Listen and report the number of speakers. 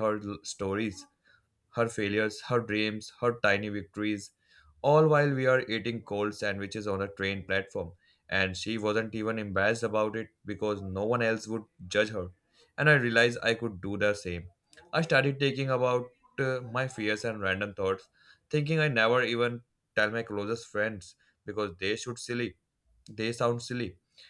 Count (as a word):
one